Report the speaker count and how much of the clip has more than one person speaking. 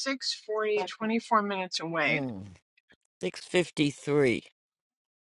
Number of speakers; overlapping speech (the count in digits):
2, about 3%